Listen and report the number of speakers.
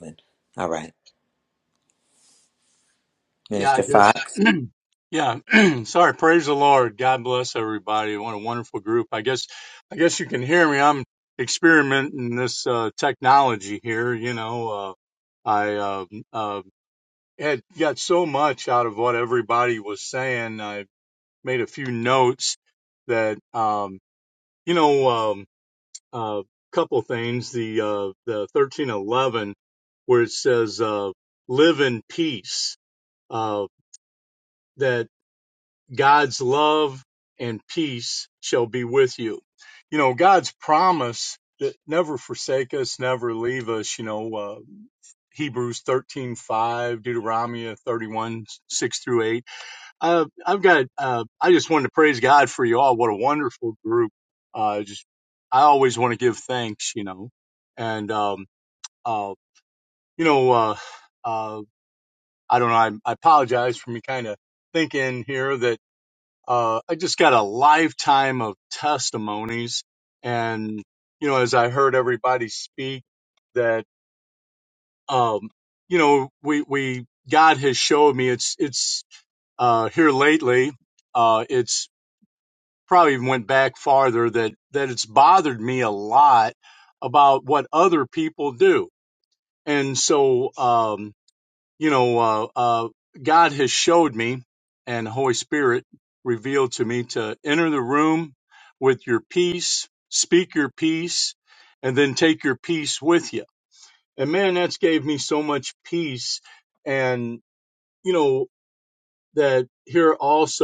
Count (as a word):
two